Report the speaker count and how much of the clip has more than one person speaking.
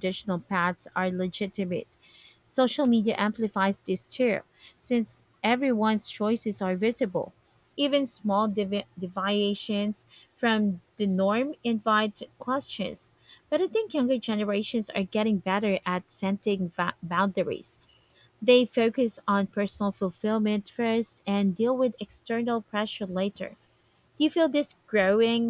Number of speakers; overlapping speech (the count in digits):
1, no overlap